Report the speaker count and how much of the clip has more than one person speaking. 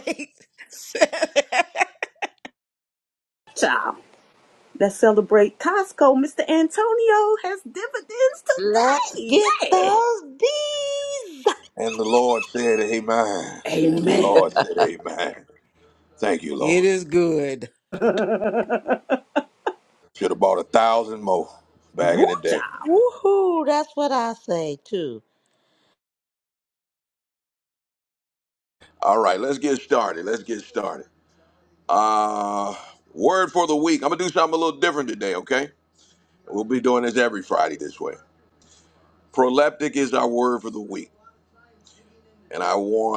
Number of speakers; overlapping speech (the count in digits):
4, about 5%